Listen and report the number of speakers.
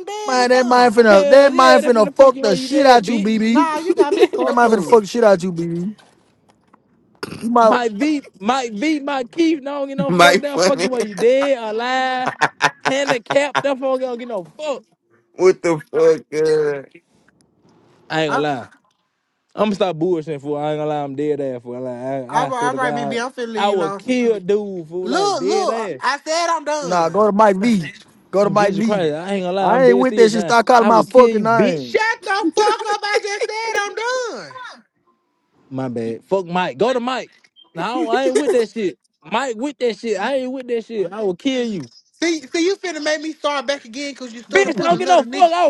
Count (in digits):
4